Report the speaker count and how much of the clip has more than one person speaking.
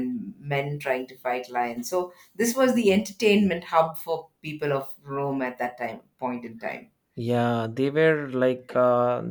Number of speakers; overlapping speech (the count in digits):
2, no overlap